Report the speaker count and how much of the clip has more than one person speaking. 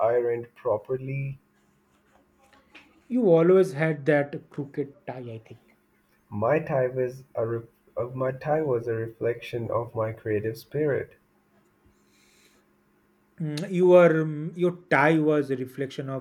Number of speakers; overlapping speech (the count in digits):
2, no overlap